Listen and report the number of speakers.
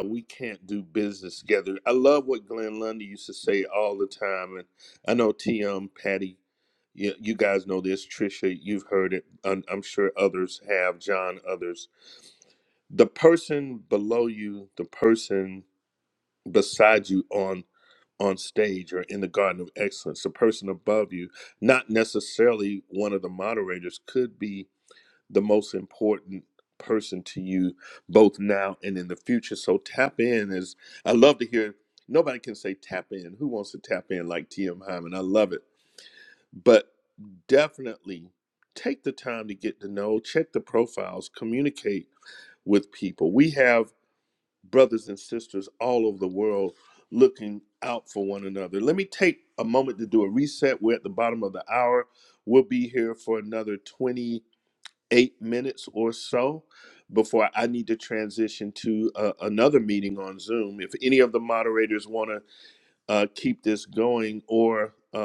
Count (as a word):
one